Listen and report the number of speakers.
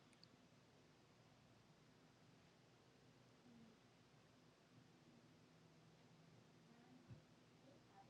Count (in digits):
0